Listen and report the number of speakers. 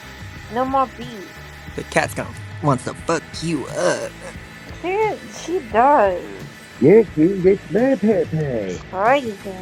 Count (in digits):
3